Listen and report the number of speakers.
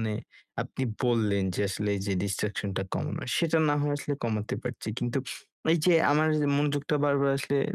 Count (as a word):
one